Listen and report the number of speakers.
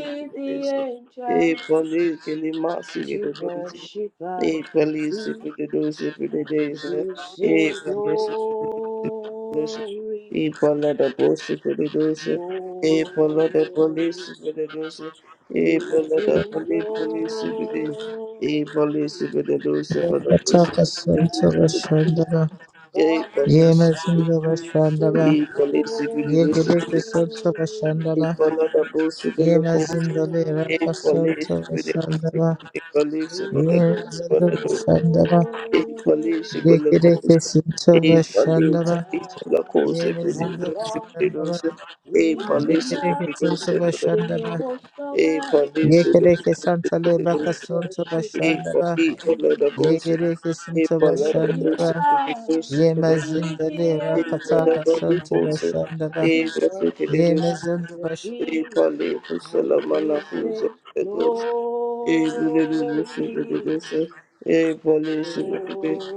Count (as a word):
three